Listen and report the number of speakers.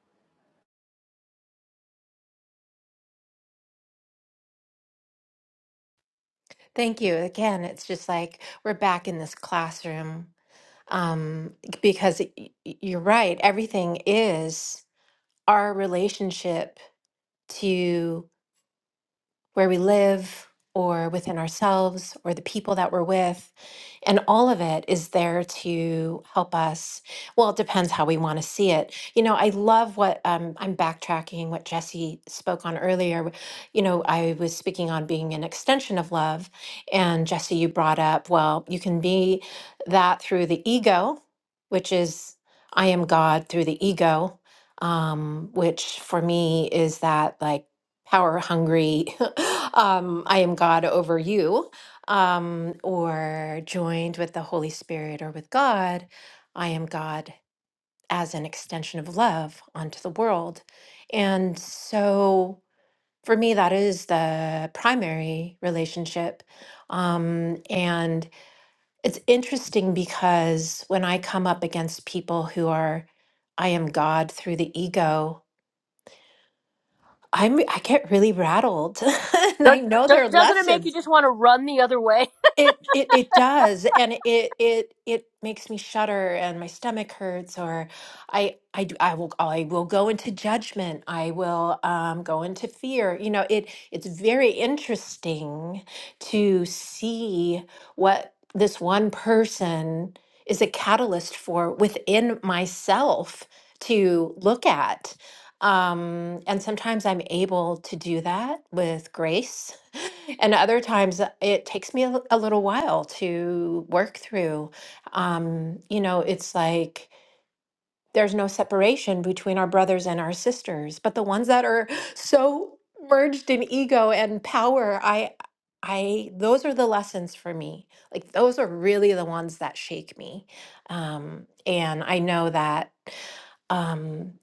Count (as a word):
two